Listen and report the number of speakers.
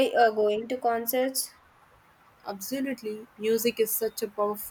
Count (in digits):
2